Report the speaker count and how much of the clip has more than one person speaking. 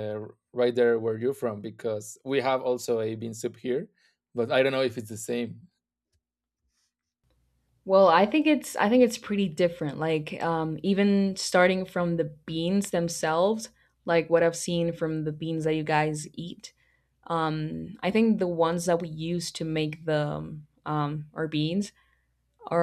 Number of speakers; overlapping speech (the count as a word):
two, no overlap